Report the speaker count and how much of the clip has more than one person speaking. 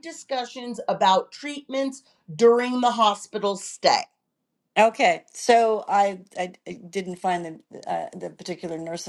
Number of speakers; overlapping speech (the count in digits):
2, no overlap